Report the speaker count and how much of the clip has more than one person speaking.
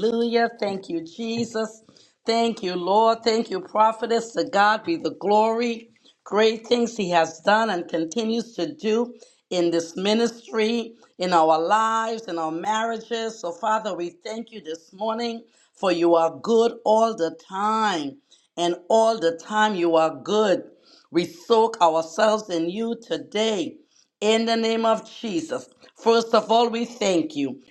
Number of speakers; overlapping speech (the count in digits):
1, no overlap